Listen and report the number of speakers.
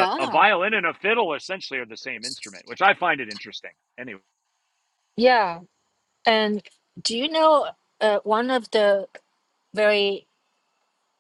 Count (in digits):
2